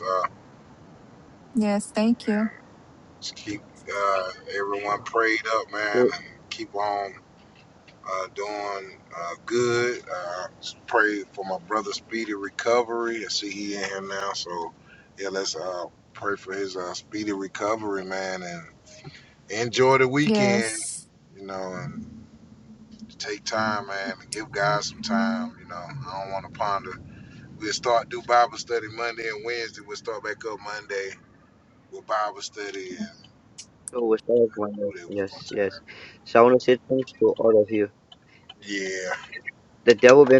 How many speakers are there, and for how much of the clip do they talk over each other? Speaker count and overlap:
three, about 4%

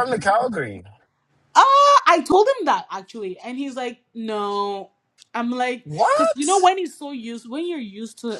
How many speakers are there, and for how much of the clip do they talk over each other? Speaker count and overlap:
two, about 10%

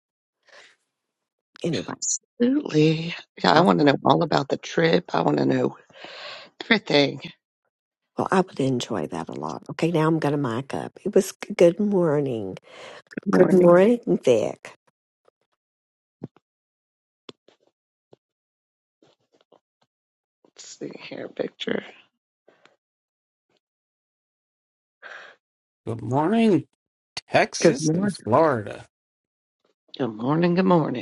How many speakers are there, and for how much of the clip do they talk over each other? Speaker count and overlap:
three, about 3%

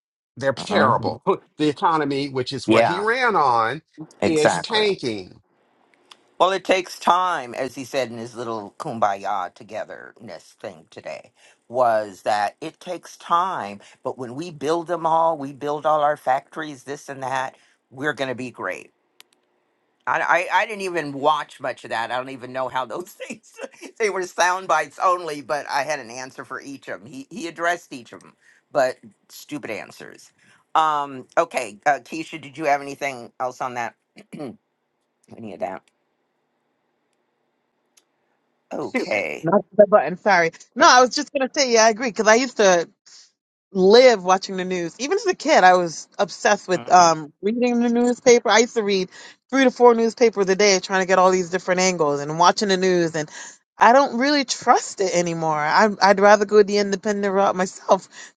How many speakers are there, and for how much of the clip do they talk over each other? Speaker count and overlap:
three, about 3%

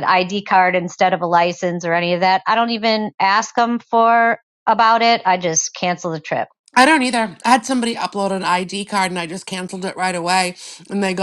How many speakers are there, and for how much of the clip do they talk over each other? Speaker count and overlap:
two, no overlap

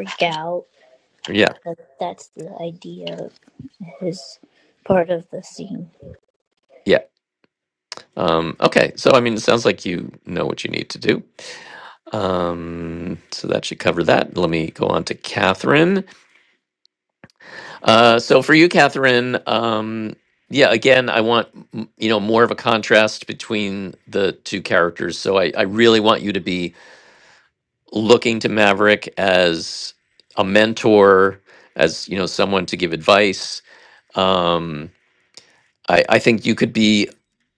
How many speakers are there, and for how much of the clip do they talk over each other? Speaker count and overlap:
two, no overlap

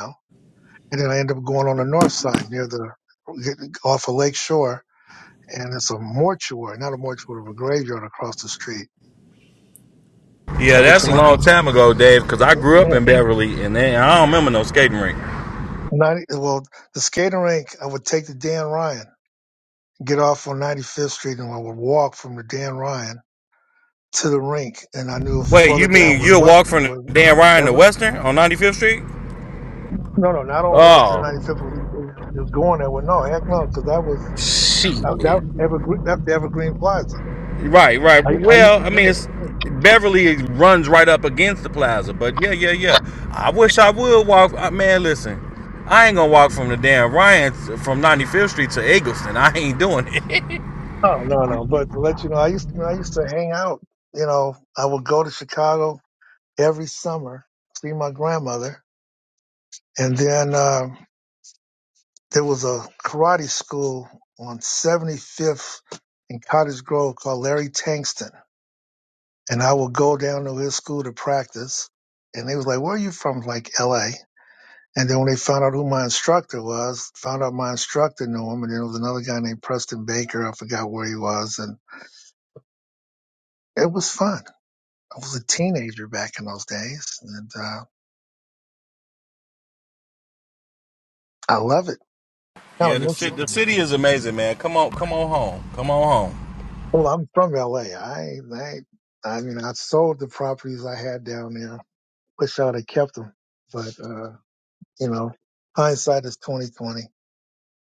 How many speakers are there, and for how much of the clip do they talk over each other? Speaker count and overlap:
two, about 5%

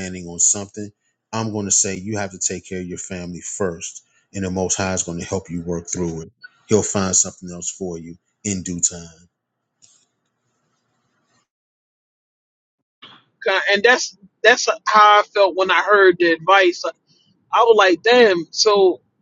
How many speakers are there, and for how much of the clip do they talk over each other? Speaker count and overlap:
two, no overlap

